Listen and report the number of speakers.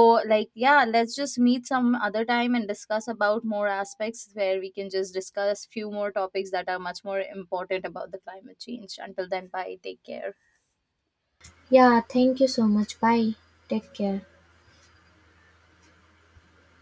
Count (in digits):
2